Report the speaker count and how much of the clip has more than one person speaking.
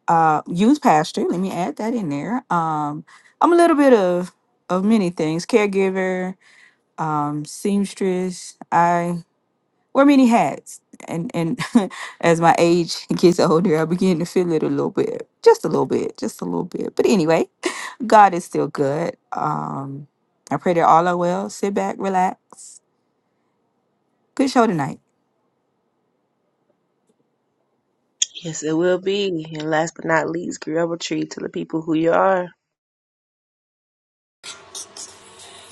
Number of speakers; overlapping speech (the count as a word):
two, no overlap